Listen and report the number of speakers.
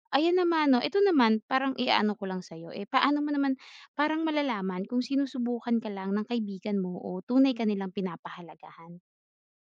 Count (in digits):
1